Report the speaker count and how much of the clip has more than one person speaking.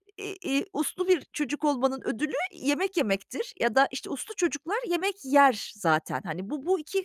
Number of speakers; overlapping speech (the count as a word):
one, no overlap